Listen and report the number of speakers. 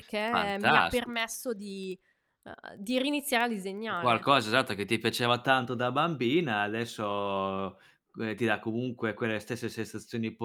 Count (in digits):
2